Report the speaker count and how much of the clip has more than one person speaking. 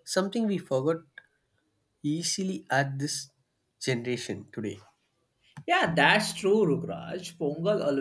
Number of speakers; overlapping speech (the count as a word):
two, no overlap